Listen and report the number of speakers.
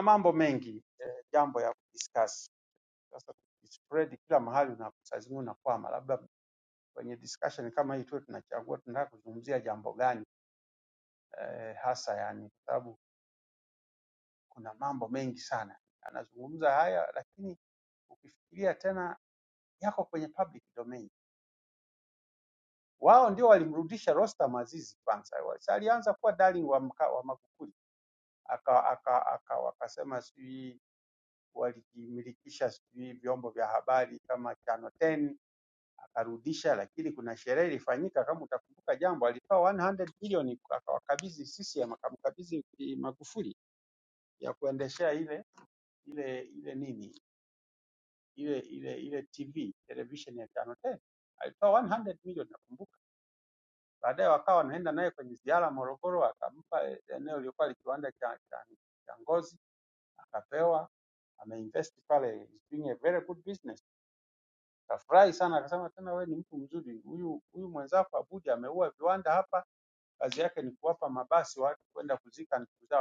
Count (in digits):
1